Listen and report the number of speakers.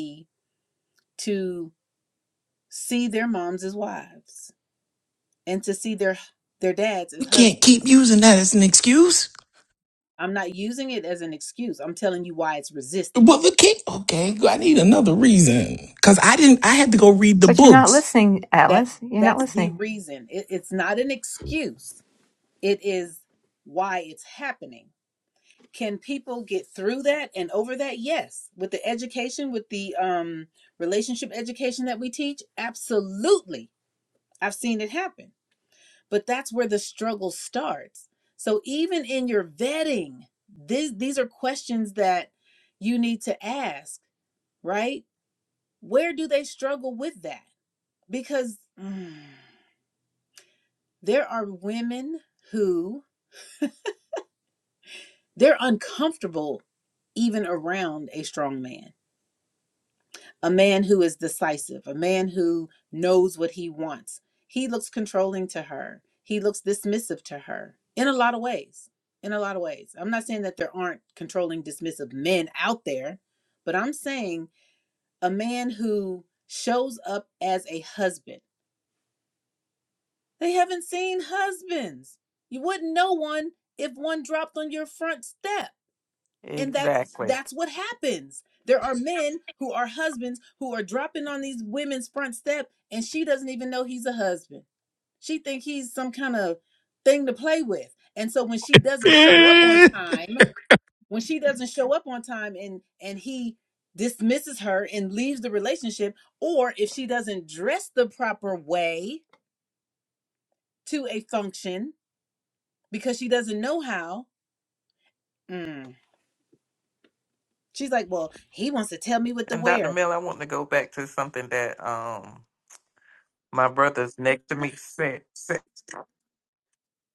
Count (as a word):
four